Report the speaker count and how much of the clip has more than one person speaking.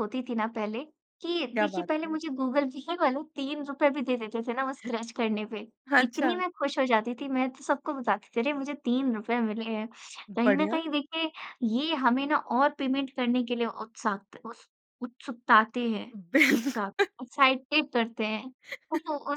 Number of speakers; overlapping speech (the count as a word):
two, about 10%